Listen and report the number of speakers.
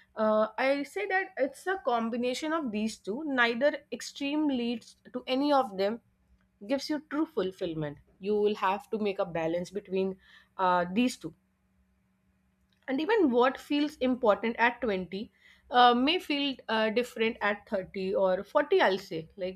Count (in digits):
1